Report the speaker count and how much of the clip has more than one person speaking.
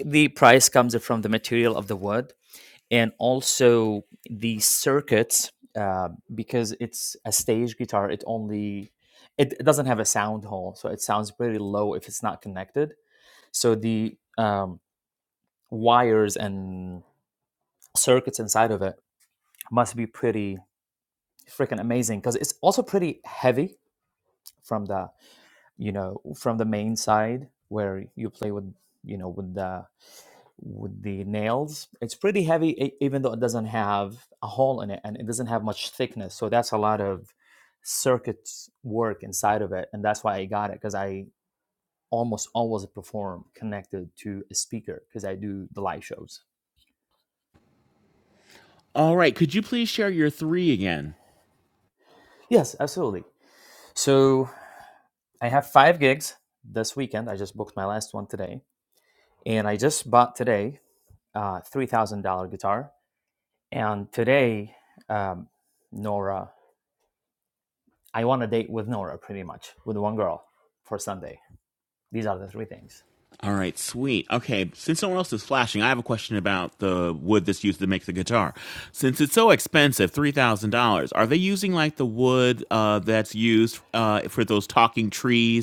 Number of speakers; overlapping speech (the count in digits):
2, no overlap